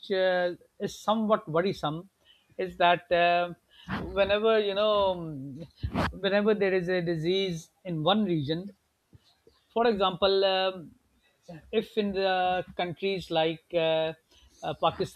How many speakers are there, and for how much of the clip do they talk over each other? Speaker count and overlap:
1, no overlap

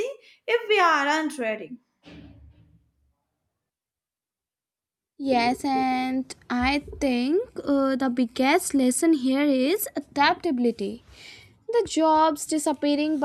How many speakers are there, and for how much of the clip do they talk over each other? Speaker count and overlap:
2, no overlap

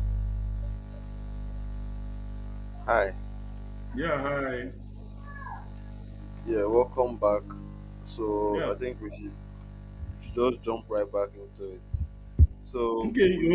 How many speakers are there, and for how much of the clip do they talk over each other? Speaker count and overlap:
2, about 6%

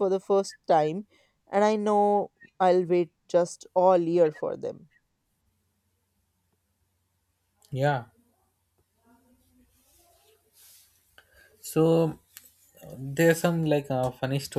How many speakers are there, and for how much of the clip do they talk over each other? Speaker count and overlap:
2, no overlap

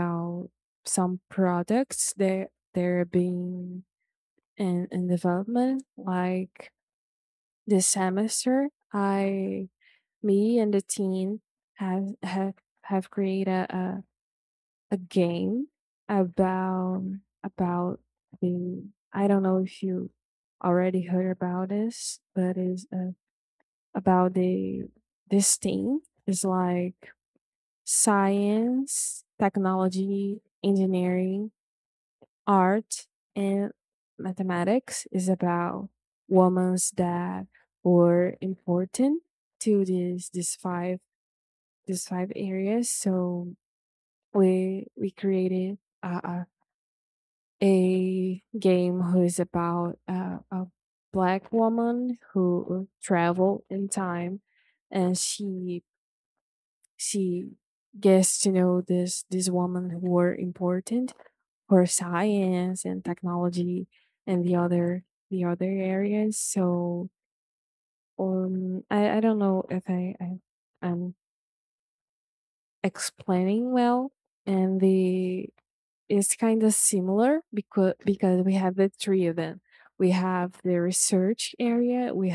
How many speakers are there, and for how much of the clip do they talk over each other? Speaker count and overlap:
1, no overlap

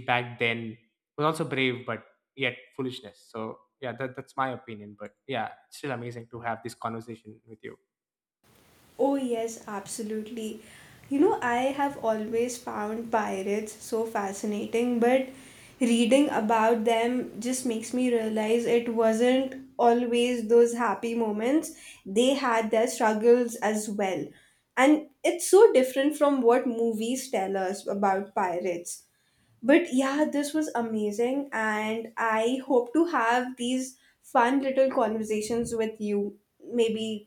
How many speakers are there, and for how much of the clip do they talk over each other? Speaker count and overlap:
2, no overlap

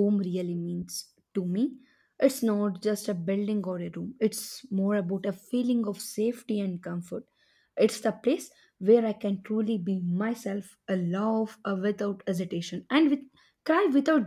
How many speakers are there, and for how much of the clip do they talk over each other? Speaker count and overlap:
1, no overlap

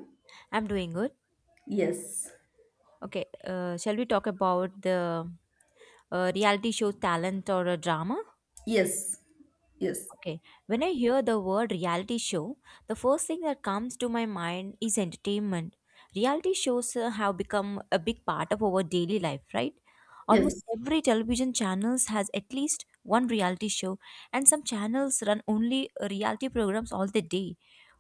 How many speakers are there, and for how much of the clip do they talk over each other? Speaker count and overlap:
2, about 1%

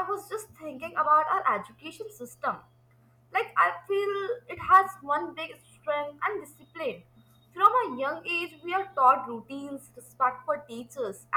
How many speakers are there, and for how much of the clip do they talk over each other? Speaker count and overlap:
1, no overlap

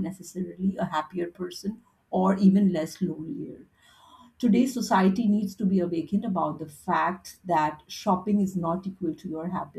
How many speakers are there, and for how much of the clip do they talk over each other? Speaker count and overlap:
1, no overlap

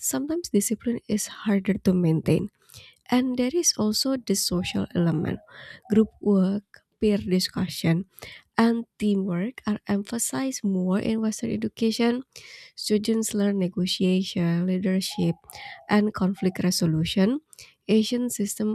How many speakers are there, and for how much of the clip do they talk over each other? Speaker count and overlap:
1, no overlap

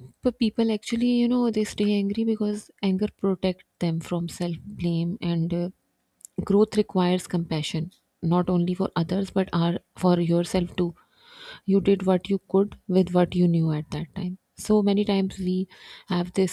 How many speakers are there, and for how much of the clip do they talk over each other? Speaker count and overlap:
1, no overlap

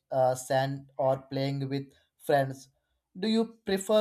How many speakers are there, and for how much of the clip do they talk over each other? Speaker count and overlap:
1, no overlap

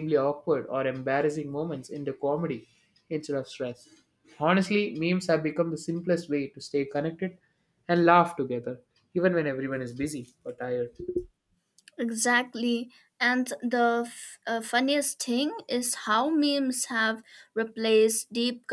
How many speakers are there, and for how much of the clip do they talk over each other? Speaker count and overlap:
2, no overlap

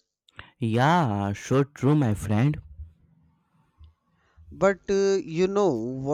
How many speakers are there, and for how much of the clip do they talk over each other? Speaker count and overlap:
2, no overlap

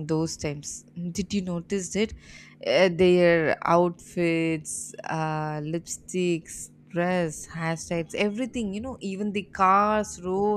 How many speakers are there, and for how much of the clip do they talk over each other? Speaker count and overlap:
1, no overlap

